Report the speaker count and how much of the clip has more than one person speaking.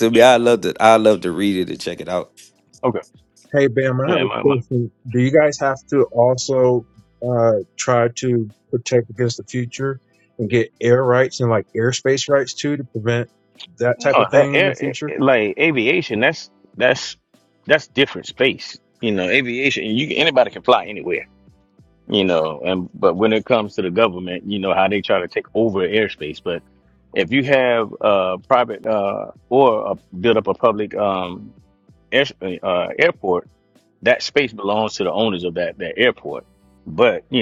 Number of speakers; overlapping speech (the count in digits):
3, about 4%